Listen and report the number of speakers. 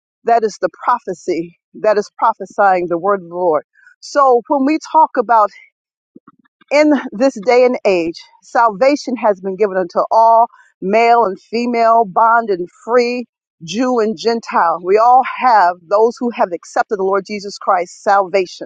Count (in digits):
1